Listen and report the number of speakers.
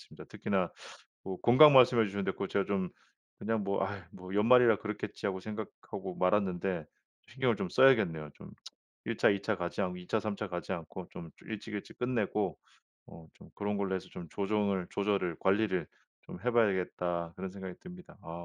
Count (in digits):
1